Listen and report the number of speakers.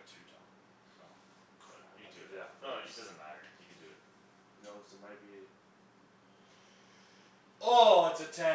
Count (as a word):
two